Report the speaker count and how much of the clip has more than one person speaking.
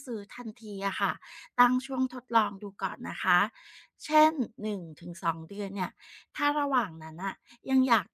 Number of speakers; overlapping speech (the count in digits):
1, no overlap